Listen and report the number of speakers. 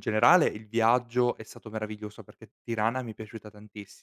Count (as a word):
one